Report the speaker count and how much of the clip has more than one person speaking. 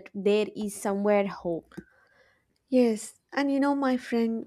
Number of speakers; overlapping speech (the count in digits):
2, no overlap